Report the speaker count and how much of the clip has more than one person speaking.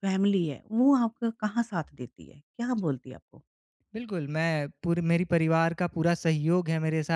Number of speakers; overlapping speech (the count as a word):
two, about 1%